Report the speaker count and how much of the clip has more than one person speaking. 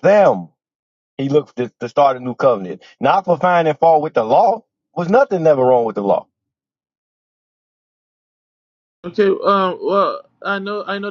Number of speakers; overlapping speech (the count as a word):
two, no overlap